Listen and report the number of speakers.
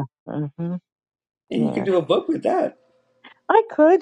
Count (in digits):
2